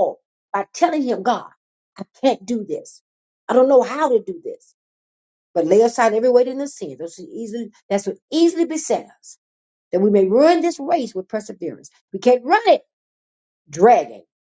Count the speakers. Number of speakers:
one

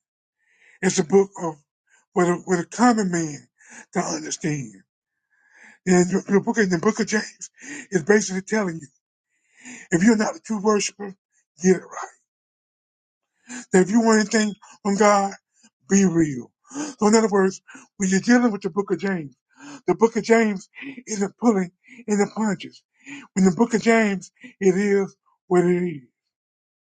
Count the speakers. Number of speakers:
one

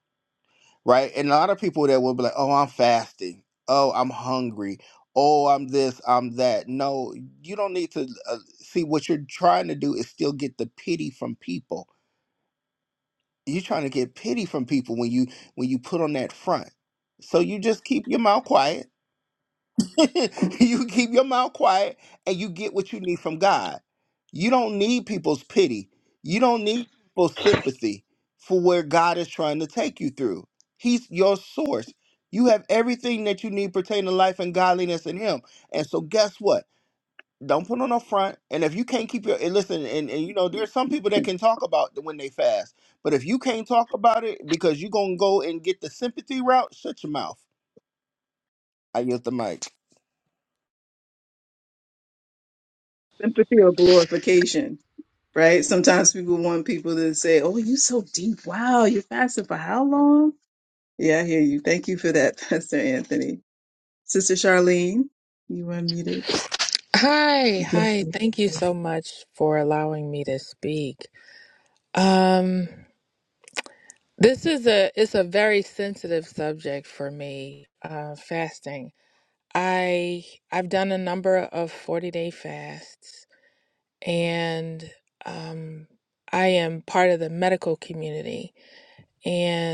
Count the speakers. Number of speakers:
three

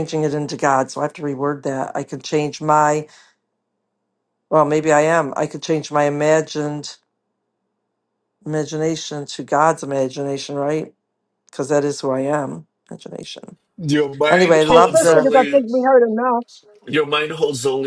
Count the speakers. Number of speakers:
three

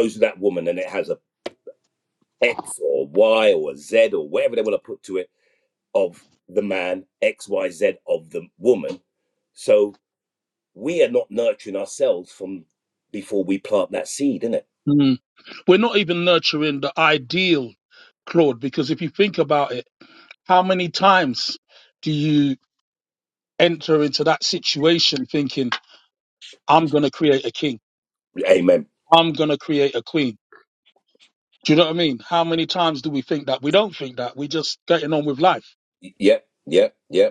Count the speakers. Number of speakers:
two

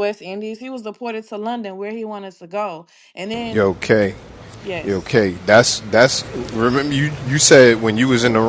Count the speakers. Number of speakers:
two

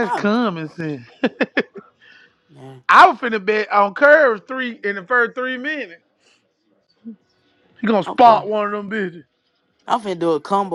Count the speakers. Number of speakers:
two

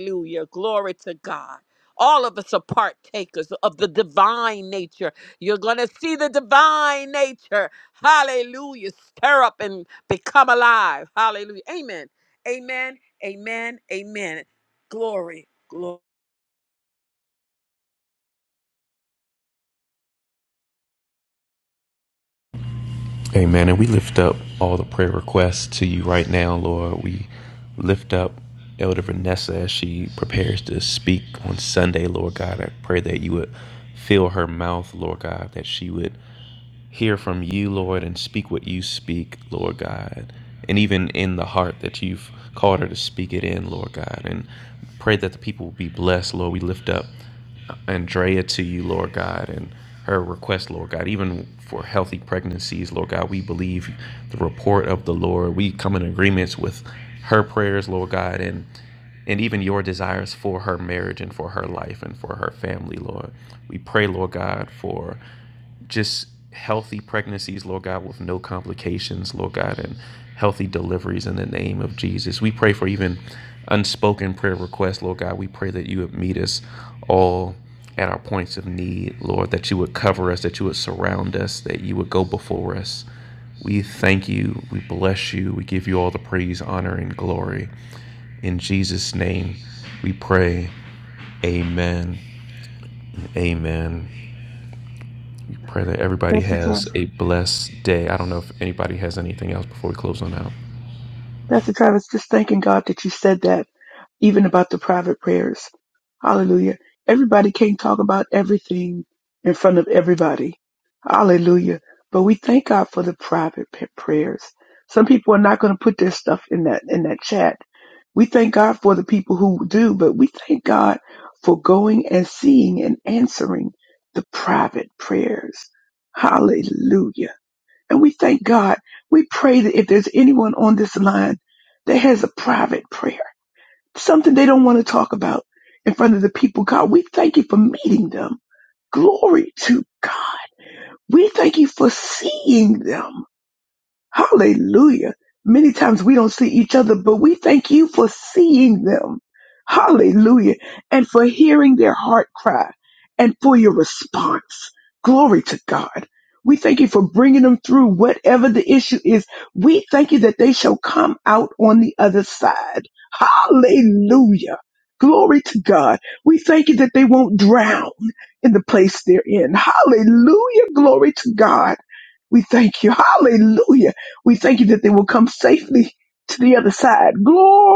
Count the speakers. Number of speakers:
three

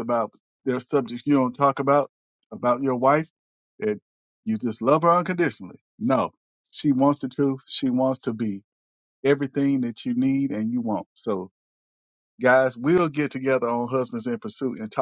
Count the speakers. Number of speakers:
one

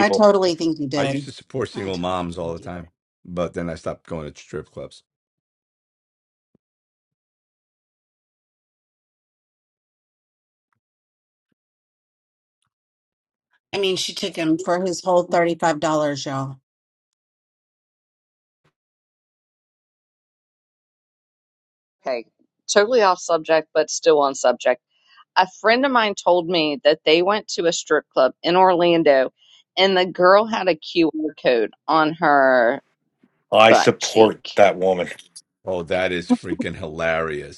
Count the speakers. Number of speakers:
four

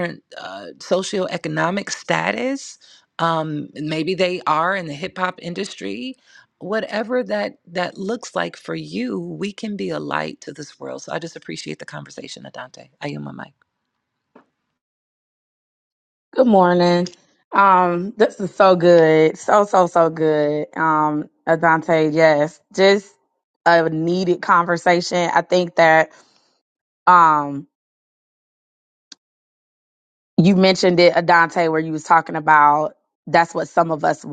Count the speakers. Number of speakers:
two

